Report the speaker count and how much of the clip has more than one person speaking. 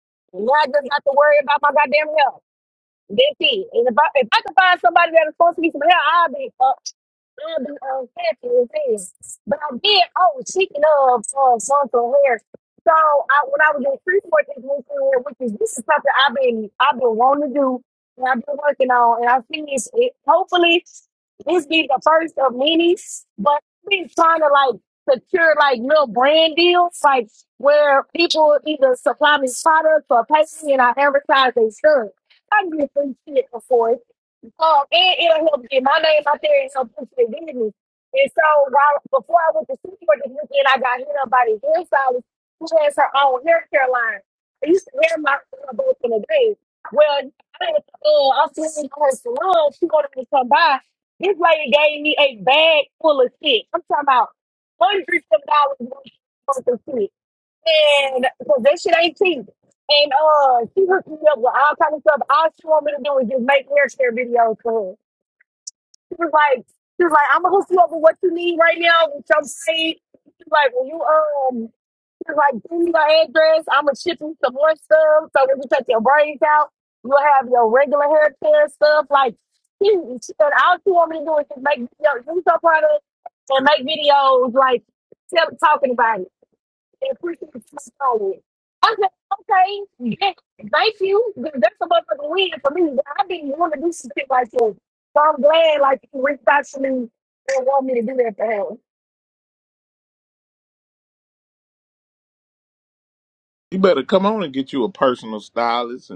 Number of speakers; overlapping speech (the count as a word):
two, no overlap